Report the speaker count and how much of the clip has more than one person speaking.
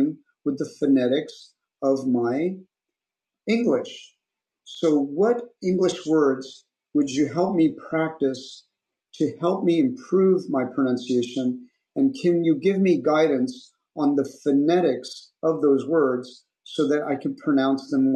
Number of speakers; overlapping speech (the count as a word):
one, no overlap